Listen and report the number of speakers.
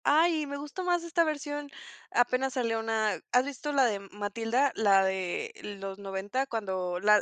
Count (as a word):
one